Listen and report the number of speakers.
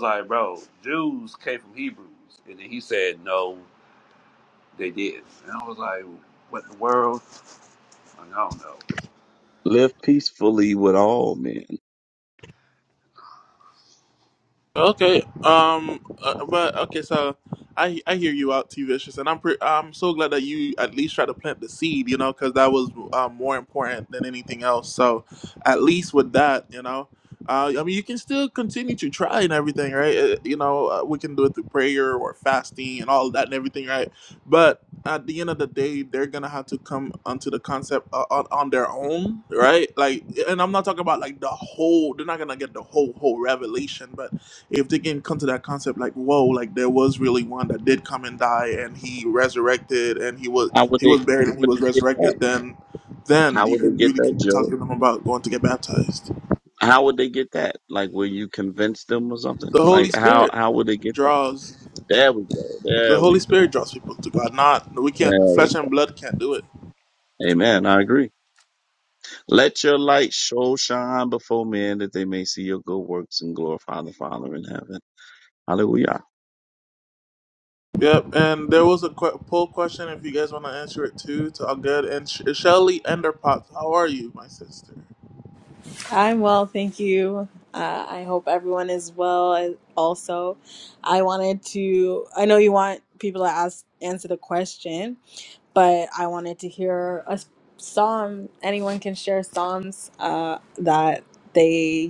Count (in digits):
4